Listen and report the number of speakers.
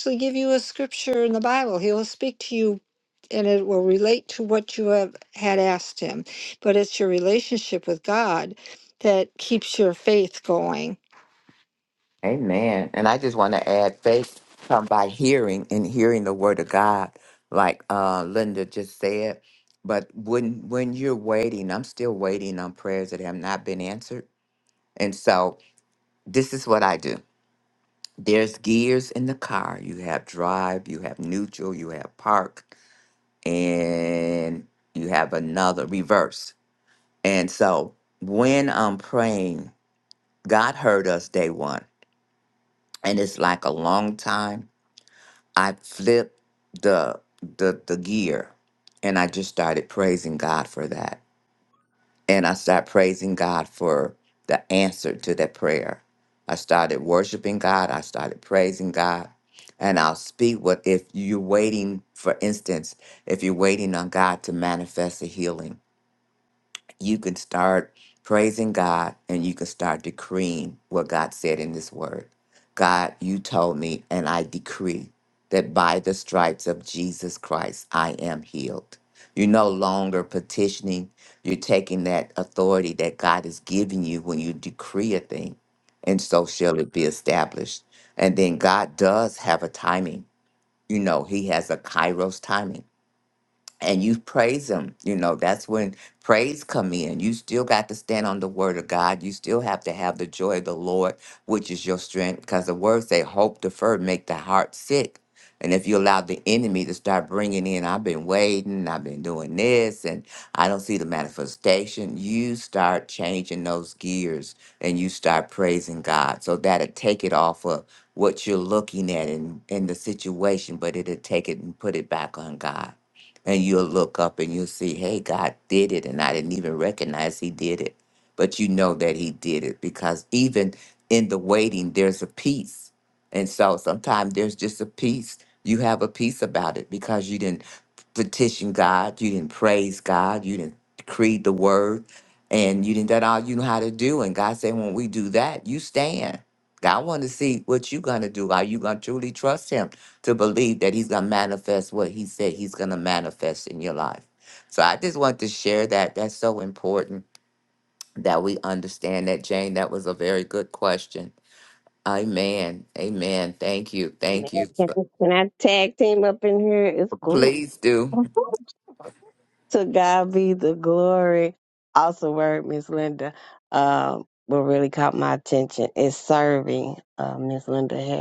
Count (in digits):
3